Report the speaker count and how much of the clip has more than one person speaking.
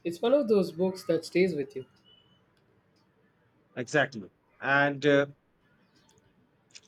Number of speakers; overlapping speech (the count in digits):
2, no overlap